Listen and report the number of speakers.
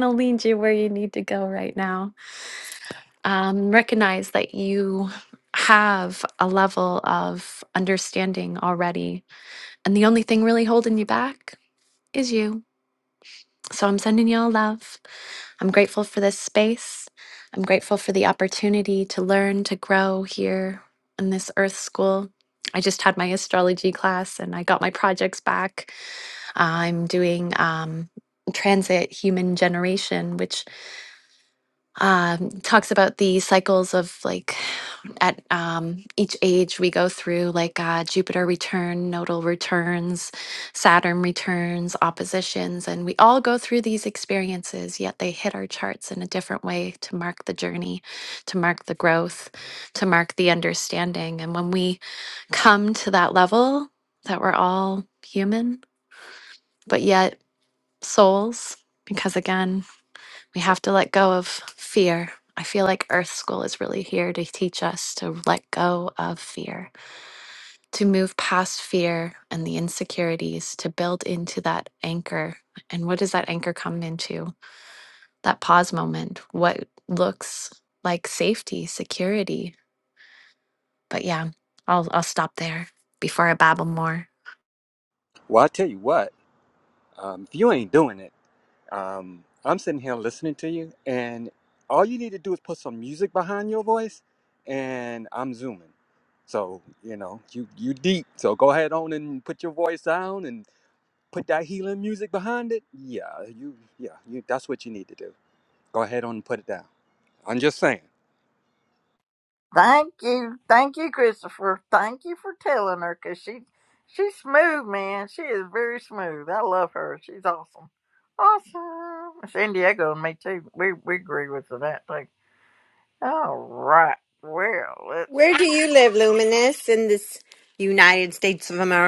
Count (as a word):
four